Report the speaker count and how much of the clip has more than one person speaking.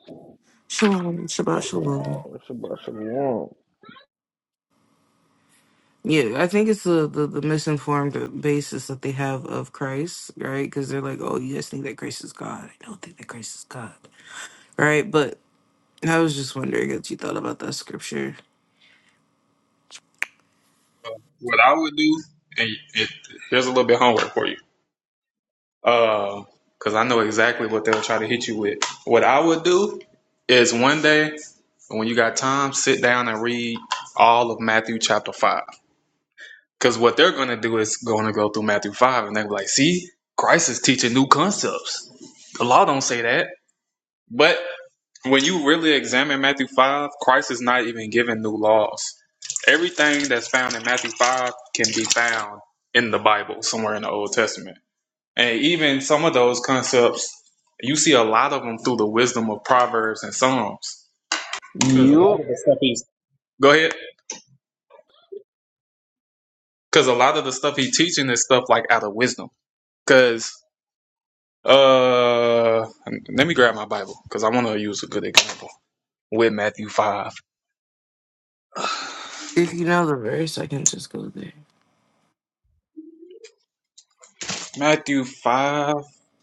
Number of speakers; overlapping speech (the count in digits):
3, about 1%